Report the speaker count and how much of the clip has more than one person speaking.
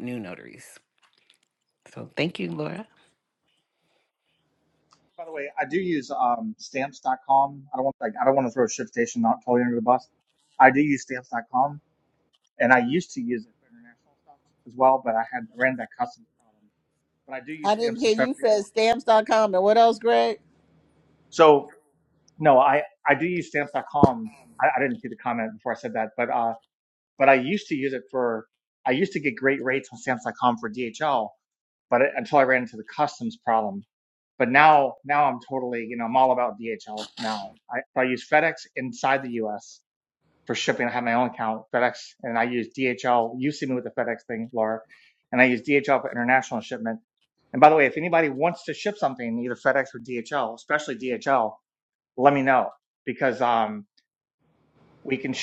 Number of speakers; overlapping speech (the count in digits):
3, about 1%